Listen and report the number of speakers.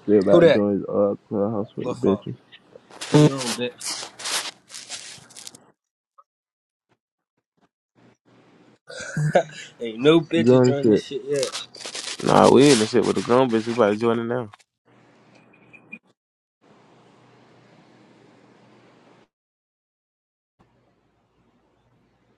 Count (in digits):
3